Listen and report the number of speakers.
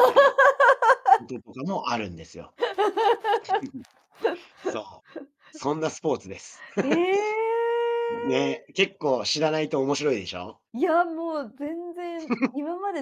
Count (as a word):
two